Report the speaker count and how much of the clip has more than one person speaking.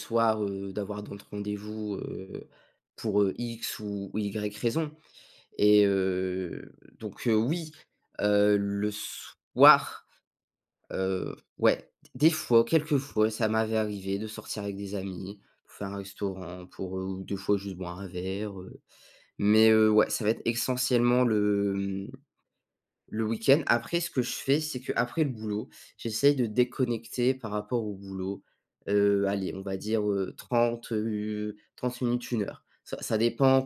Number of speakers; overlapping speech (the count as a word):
one, no overlap